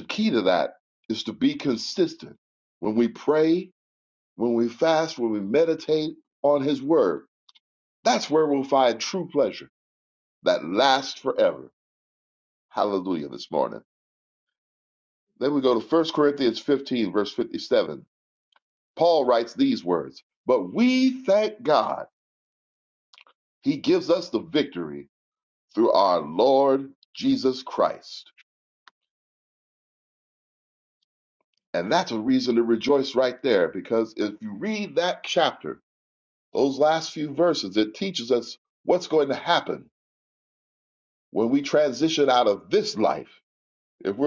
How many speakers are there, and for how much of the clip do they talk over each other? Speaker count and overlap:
1, no overlap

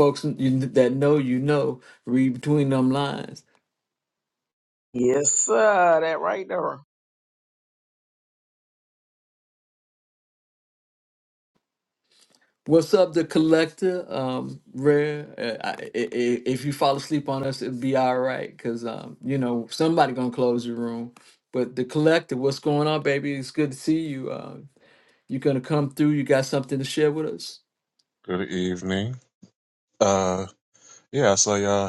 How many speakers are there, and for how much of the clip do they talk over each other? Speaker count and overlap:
3, no overlap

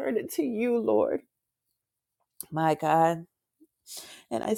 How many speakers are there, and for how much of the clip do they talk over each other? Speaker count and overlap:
1, no overlap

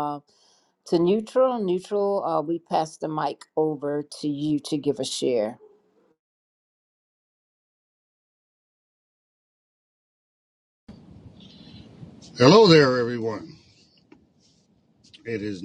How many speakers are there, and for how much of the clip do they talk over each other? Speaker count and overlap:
2, no overlap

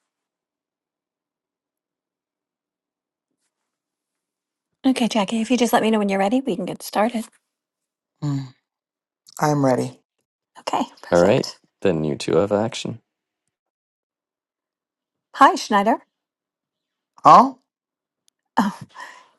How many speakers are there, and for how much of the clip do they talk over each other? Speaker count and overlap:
3, about 2%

